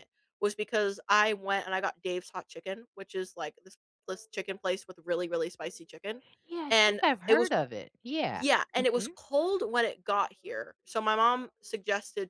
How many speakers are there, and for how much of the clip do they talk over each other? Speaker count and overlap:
2, about 10%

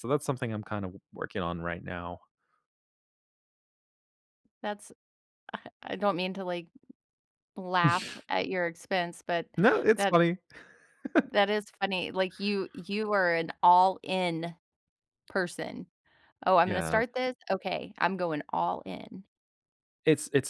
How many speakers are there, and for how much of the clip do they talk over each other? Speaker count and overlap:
2, about 3%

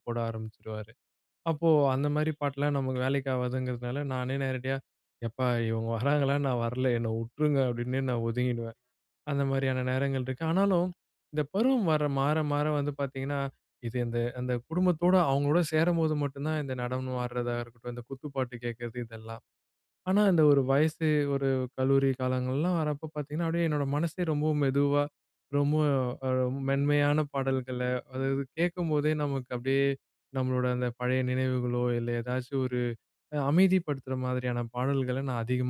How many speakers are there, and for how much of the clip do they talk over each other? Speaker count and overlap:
1, no overlap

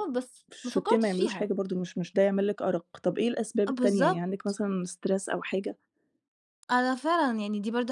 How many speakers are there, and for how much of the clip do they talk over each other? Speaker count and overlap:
2, about 17%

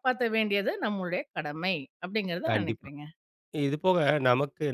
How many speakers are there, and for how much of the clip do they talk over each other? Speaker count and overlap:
2, about 9%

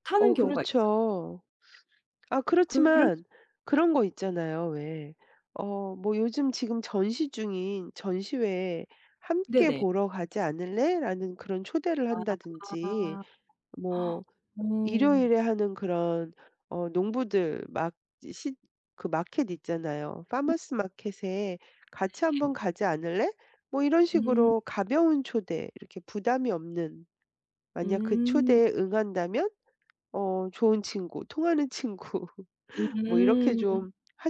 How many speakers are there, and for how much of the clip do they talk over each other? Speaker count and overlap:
2, about 12%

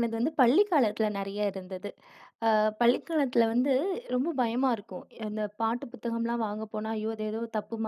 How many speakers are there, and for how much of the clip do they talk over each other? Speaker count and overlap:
1, no overlap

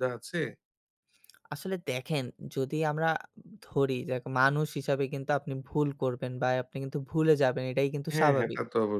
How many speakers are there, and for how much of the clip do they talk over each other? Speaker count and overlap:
2, about 5%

